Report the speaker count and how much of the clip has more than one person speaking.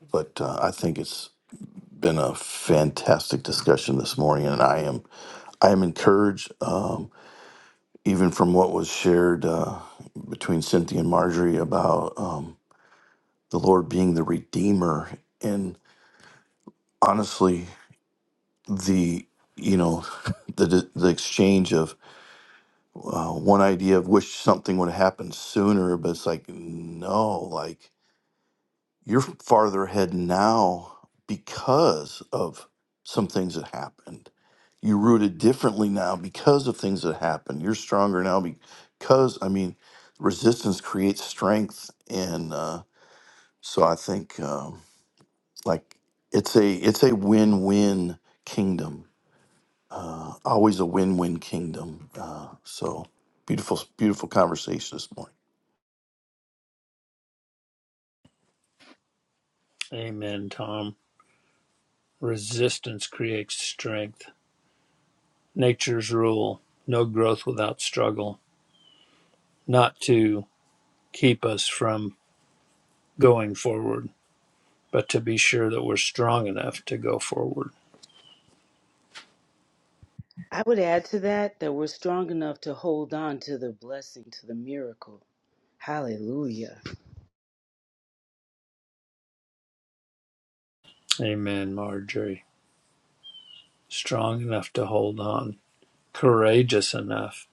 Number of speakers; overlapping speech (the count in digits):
3, no overlap